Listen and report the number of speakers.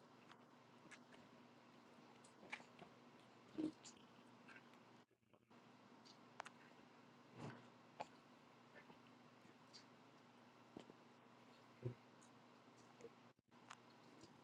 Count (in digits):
0